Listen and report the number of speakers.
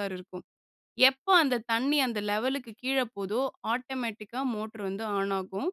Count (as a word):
one